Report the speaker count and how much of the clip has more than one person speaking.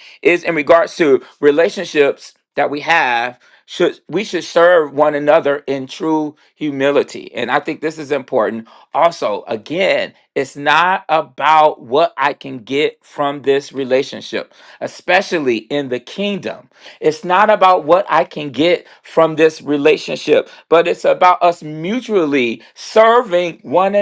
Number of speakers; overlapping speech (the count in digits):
1, no overlap